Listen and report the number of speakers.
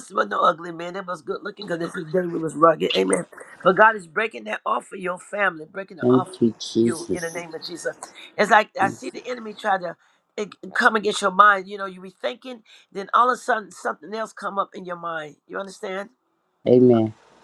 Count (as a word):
two